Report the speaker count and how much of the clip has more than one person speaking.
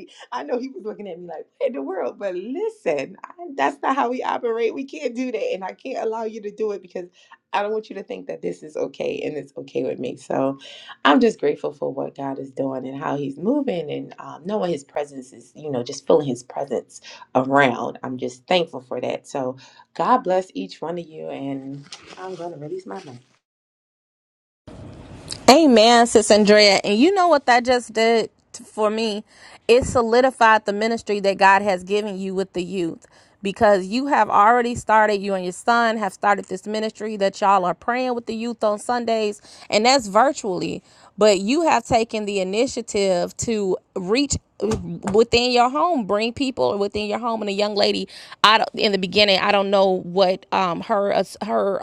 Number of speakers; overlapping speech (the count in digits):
2, no overlap